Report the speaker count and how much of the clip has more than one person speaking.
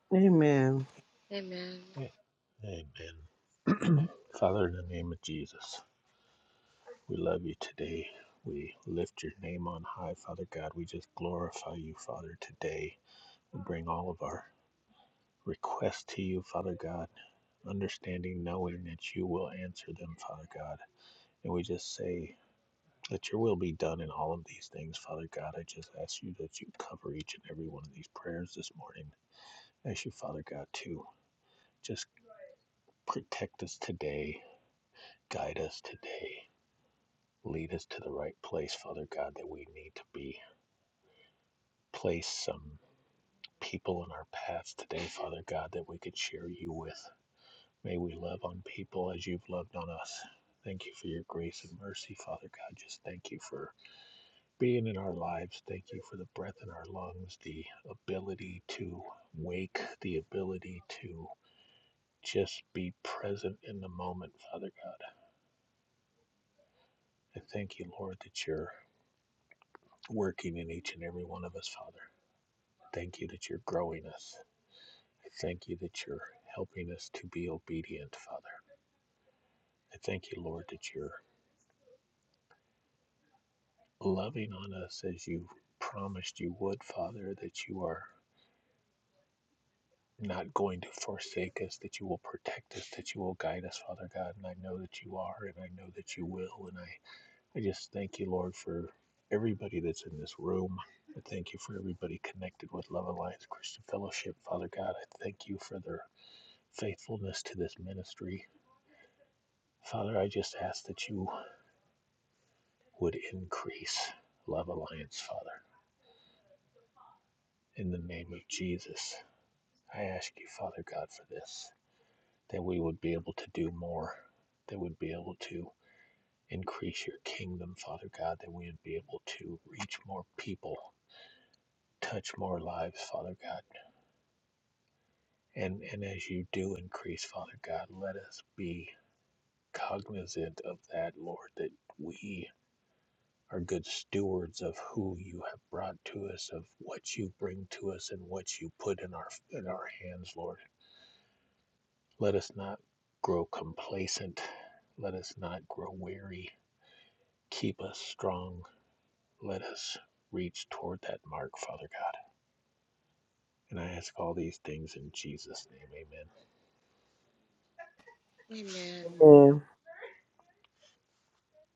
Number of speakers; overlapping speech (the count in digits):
3, under 1%